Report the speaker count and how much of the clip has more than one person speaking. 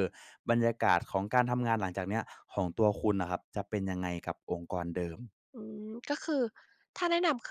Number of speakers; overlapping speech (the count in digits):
2, no overlap